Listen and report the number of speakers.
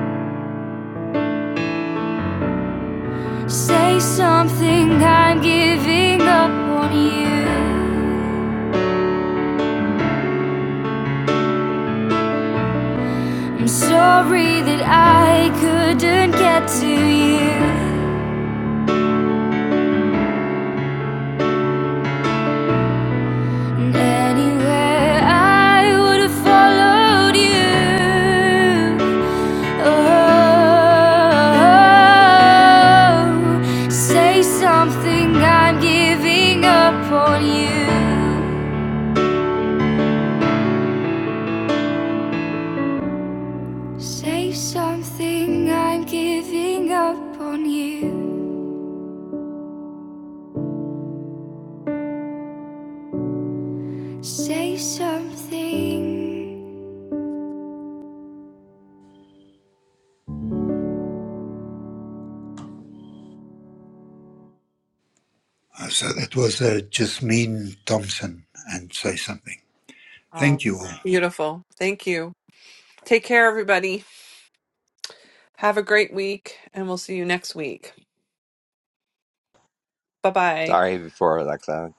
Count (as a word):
four